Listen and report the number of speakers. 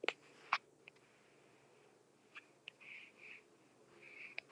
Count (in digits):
0